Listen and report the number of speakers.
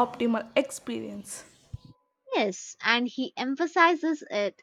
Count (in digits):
2